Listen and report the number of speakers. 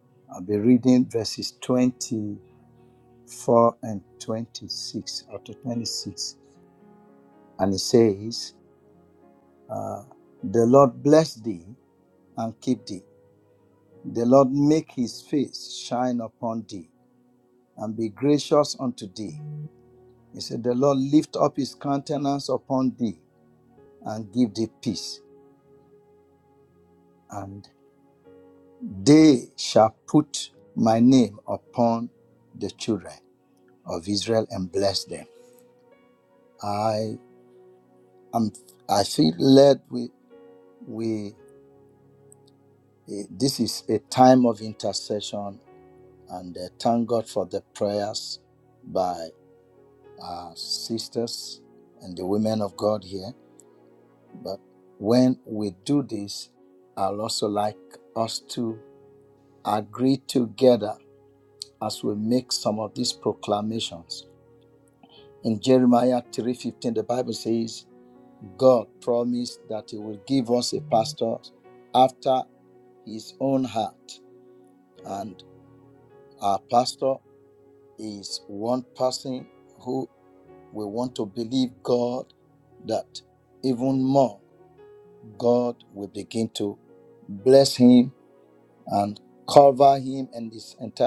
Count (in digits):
1